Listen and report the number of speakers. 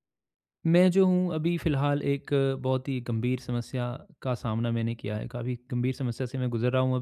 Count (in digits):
1